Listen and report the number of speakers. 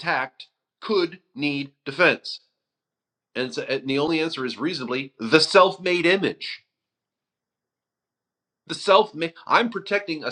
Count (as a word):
one